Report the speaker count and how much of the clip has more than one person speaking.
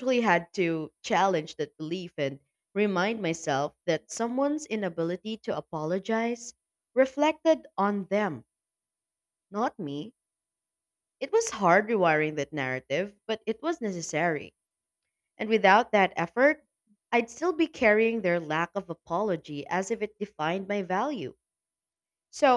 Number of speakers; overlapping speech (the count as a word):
one, no overlap